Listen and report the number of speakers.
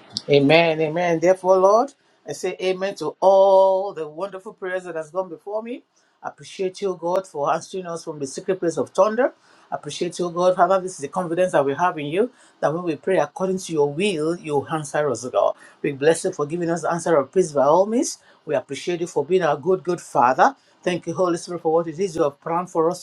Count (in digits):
1